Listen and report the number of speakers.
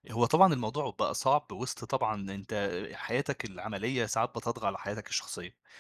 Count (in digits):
1